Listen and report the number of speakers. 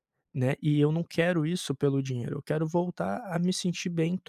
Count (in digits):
1